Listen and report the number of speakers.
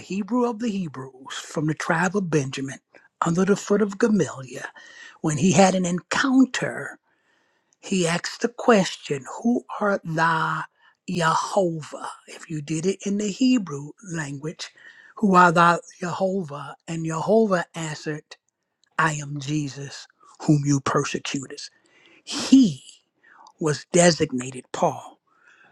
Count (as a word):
one